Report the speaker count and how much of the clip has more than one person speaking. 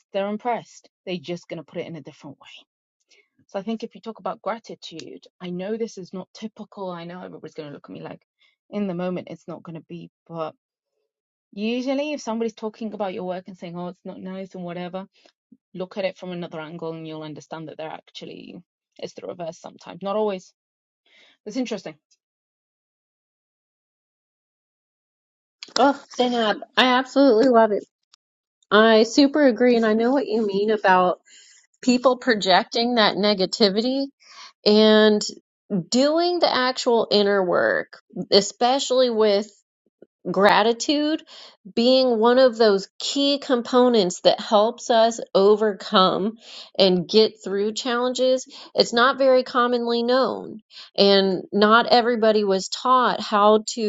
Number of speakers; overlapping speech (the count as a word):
two, no overlap